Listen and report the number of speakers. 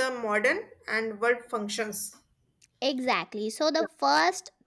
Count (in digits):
2